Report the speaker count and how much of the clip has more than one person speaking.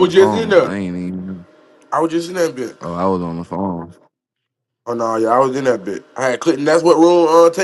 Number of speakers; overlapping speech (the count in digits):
2, about 10%